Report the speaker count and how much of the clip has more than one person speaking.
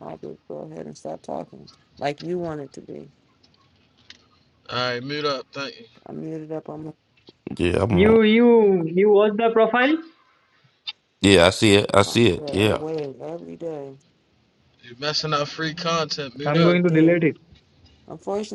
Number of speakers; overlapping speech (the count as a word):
four, about 7%